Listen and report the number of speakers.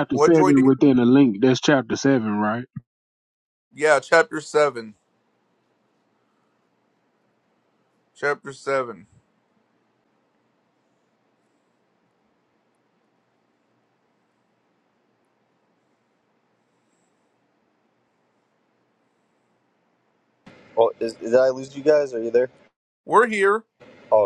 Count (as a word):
three